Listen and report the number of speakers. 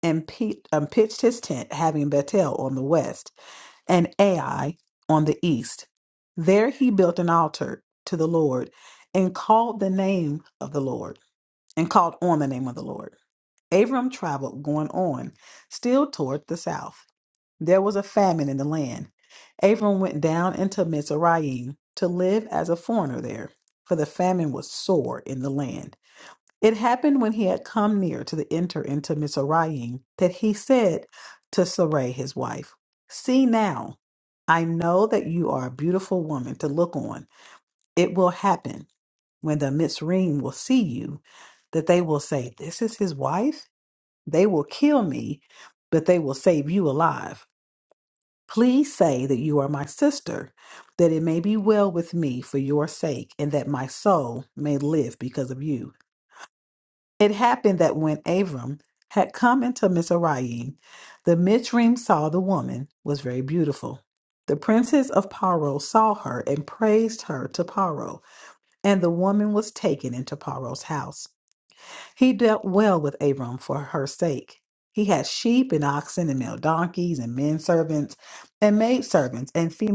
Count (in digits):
1